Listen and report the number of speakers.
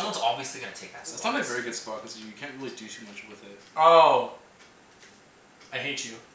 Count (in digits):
3